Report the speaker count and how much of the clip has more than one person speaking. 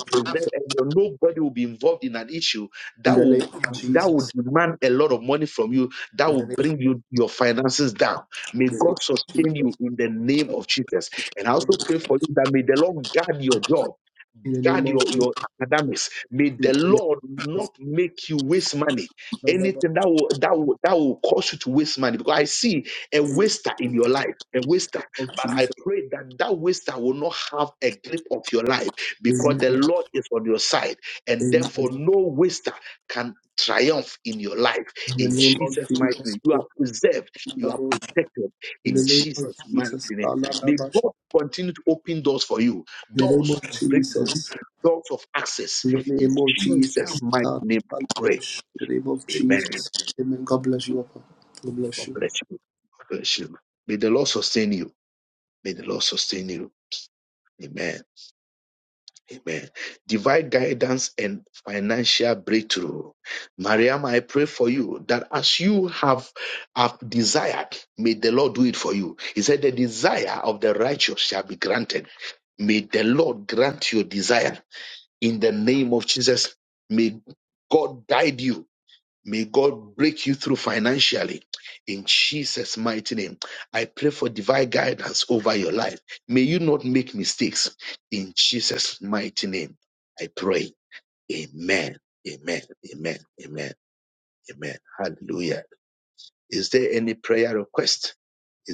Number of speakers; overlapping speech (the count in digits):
2, about 14%